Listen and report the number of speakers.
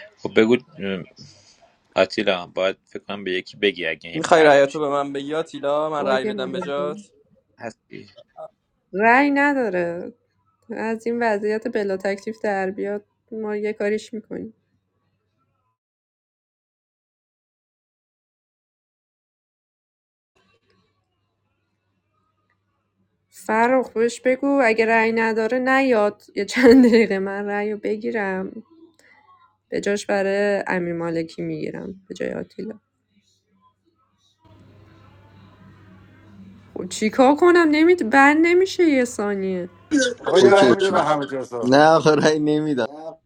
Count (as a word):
five